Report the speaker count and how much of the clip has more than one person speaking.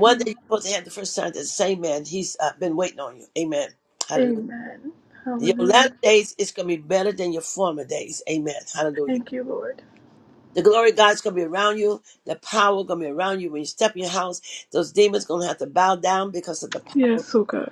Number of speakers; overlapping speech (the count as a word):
two, about 9%